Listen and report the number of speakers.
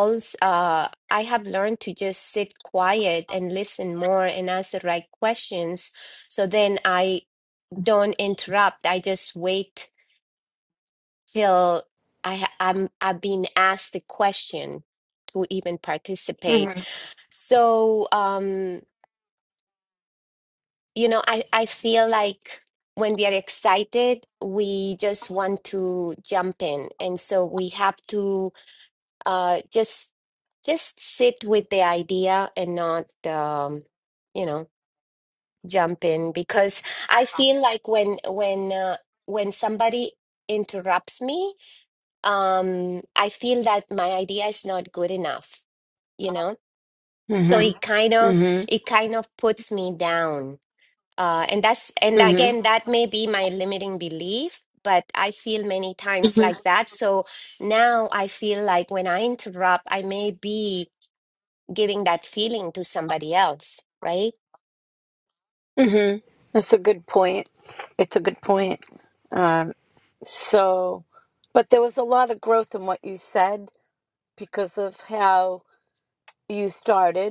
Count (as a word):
two